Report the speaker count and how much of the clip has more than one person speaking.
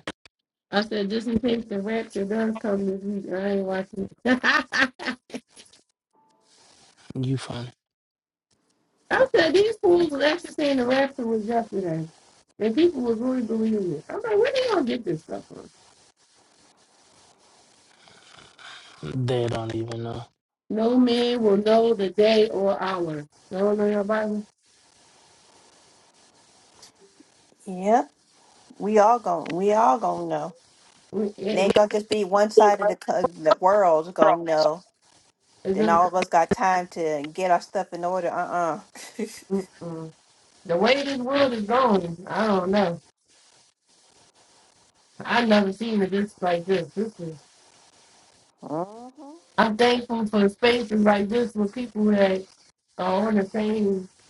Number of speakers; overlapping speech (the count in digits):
3, about 1%